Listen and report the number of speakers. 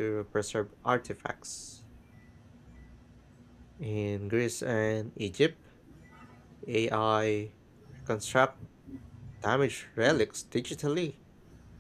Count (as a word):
one